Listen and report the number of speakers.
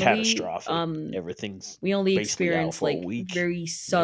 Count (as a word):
two